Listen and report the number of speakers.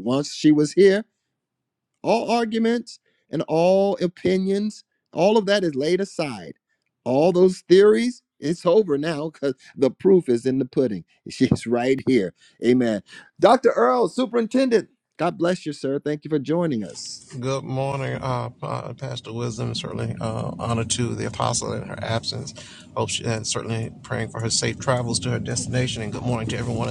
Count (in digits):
2